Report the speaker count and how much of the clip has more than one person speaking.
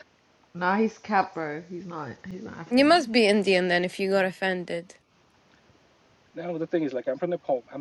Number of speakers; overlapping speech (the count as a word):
three, about 5%